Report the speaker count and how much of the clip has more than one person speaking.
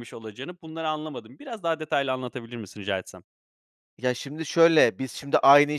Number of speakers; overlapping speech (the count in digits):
2, no overlap